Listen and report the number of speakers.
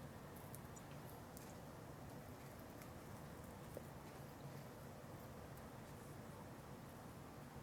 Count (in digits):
0